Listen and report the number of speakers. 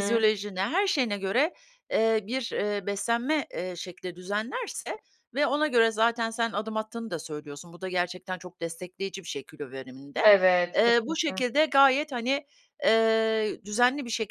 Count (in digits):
2